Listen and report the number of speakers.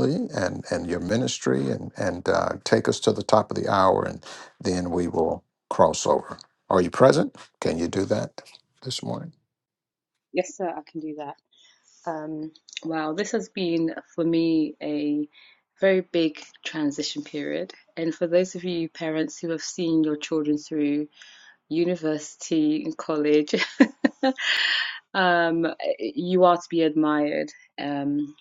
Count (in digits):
2